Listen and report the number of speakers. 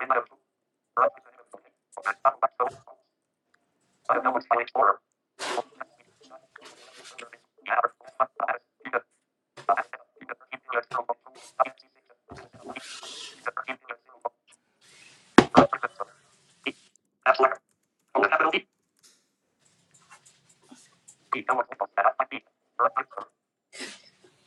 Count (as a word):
zero